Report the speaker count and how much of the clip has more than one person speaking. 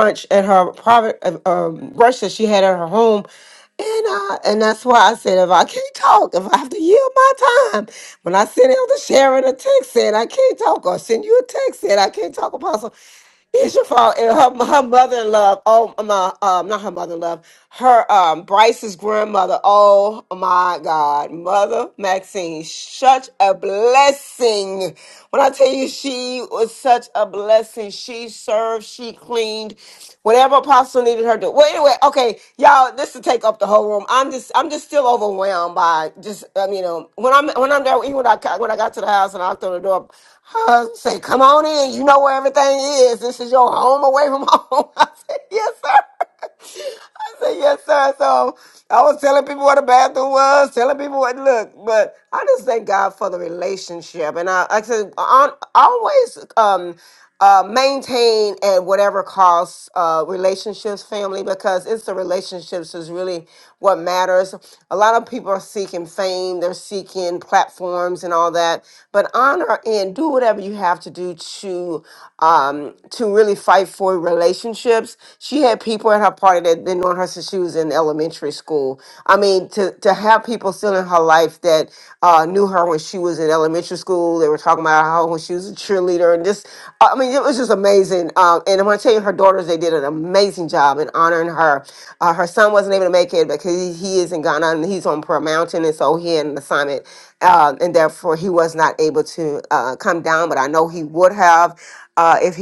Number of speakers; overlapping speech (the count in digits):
1, no overlap